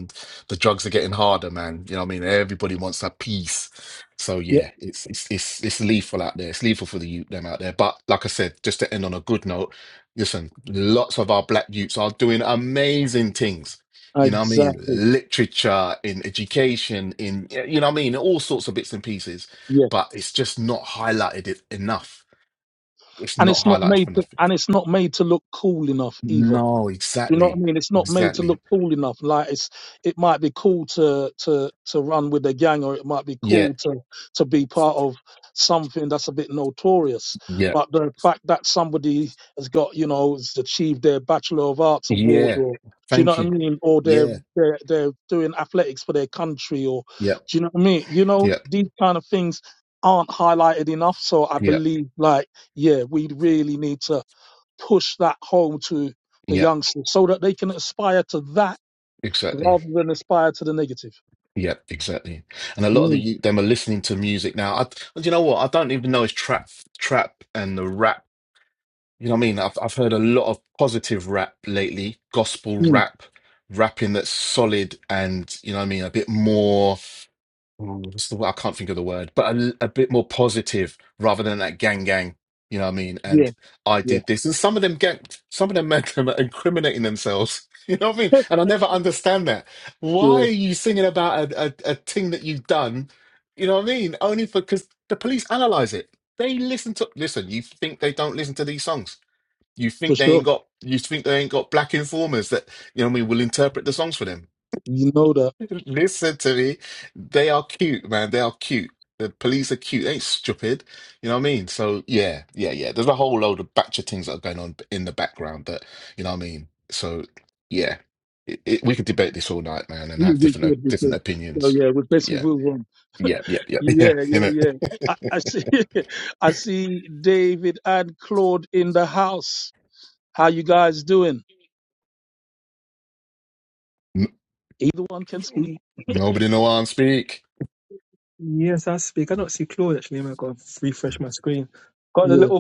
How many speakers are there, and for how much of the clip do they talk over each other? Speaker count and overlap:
three, about 7%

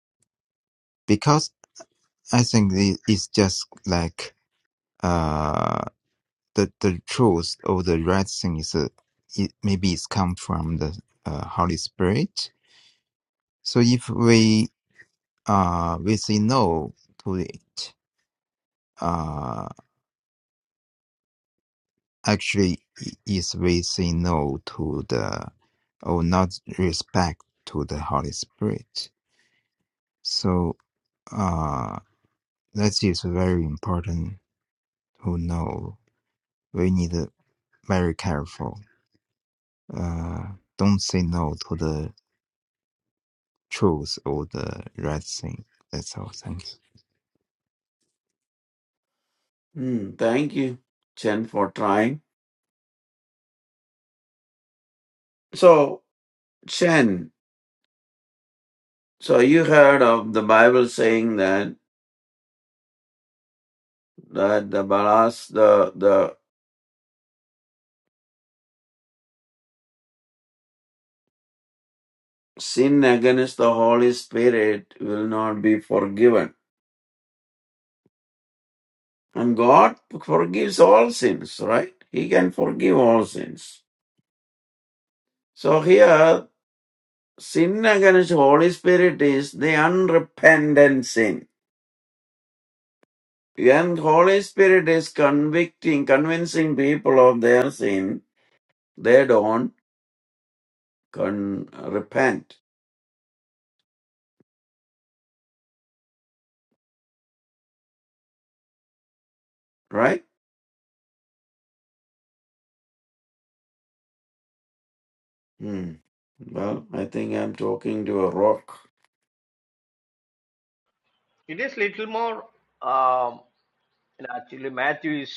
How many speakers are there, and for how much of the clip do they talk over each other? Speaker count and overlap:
three, no overlap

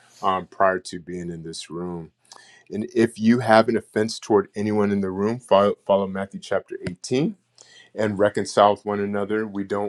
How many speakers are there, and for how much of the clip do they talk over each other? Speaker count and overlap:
one, no overlap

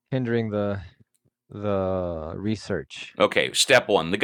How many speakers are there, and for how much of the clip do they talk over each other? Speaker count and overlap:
two, no overlap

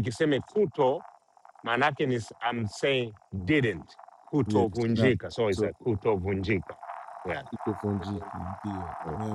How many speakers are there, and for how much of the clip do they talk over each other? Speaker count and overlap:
two, about 12%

